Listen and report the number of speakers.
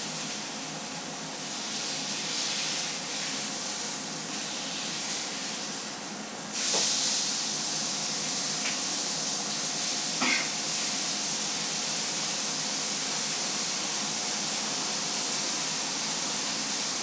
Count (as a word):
zero